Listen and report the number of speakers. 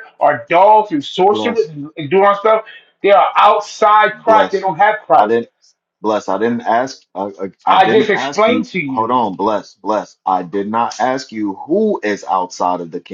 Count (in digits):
2